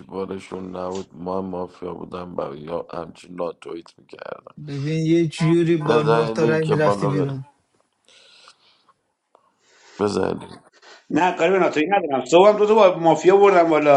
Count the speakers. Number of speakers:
three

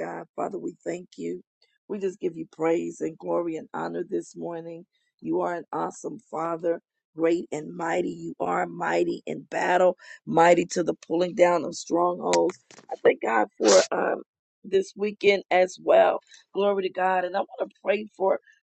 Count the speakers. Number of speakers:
one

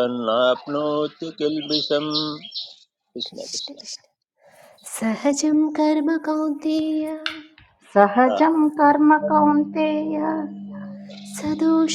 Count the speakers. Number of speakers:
three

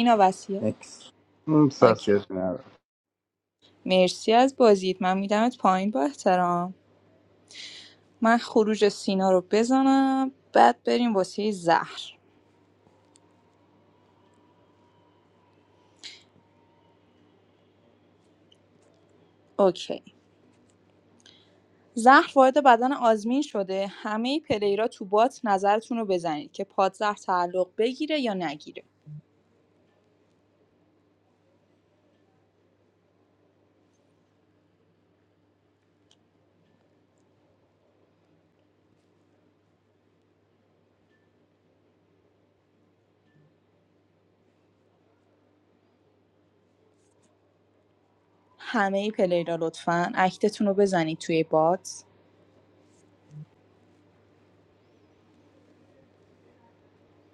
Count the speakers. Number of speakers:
two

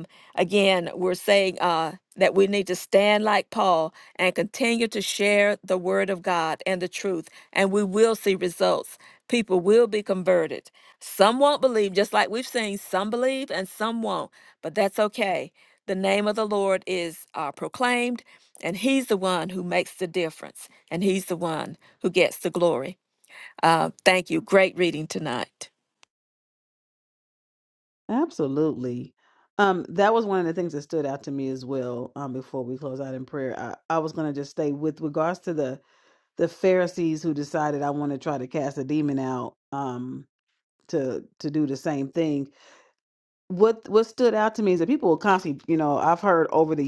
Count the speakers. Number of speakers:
two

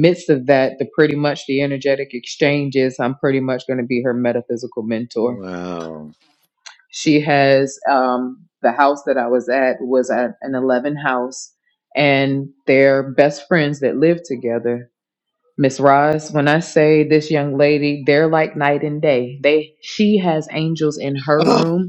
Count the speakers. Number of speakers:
two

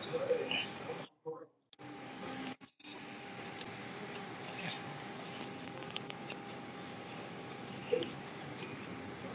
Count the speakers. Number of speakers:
zero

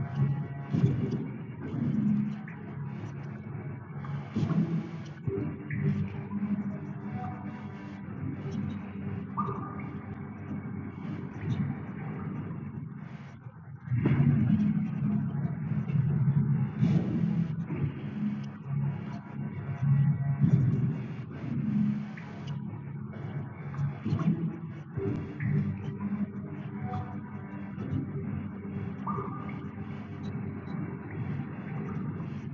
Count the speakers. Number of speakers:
zero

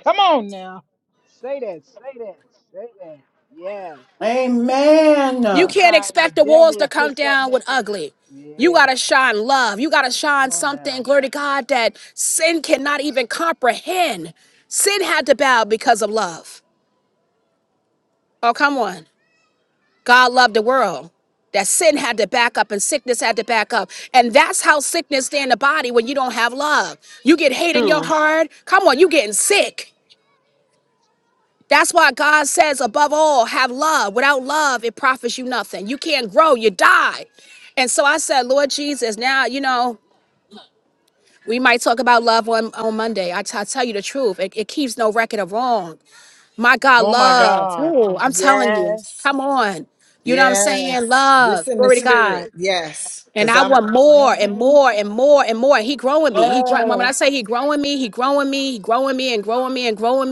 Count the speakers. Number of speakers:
four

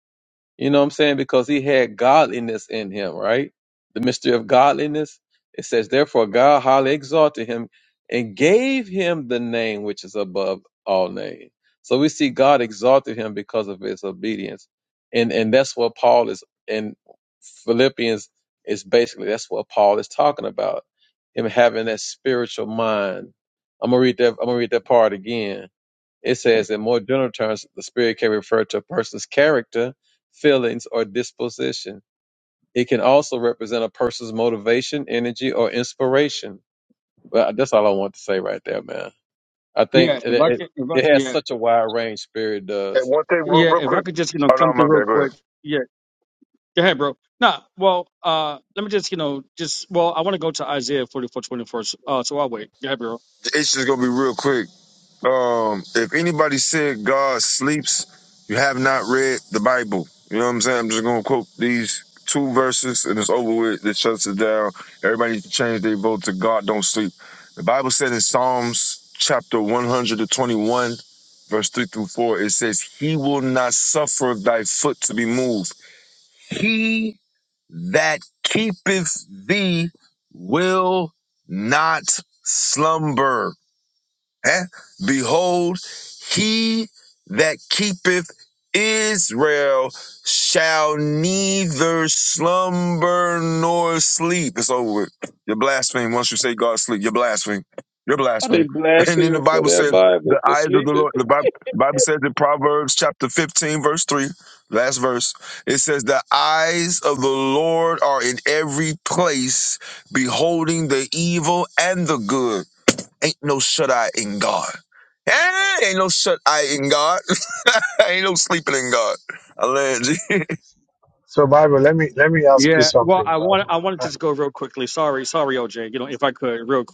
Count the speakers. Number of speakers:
four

